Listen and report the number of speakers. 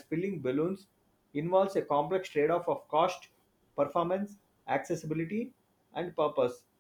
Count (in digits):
1